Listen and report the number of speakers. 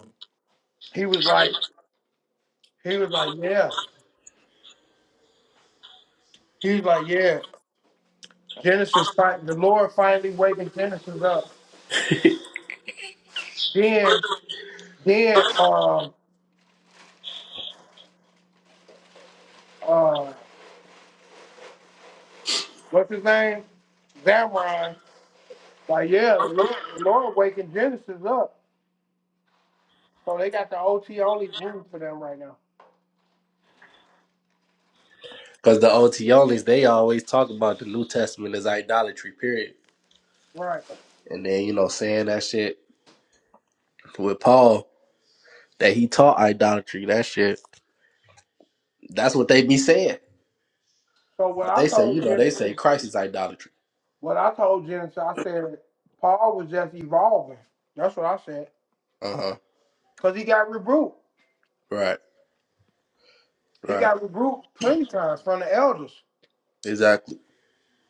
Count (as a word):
two